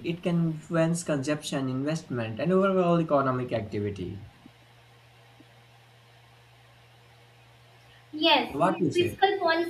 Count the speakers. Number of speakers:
two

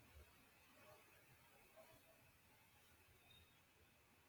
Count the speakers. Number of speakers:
zero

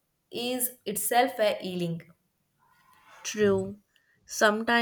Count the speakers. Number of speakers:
two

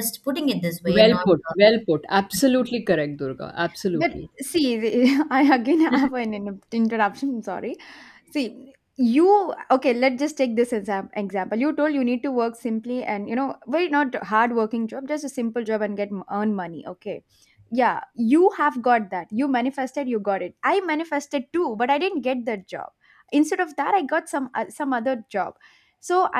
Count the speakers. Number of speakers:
three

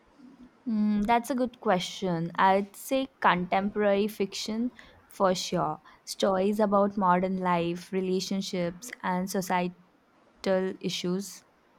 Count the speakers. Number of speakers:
one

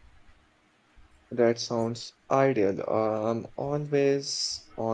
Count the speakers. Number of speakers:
one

